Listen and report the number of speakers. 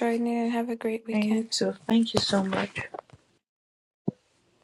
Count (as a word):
two